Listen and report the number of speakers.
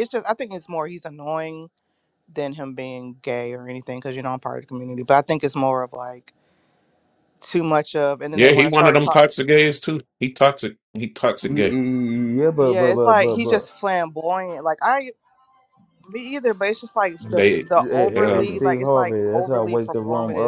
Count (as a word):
three